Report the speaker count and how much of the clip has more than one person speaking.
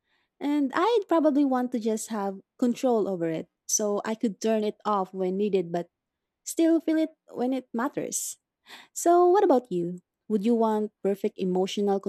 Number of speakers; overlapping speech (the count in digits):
1, no overlap